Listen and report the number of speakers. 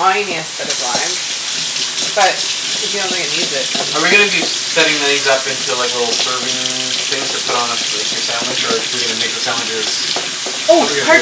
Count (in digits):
2